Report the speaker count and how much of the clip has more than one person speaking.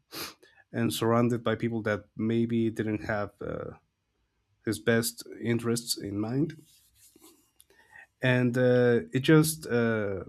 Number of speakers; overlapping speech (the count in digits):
1, no overlap